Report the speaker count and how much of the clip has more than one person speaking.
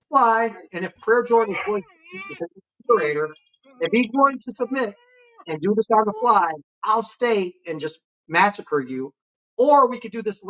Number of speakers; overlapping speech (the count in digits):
1, no overlap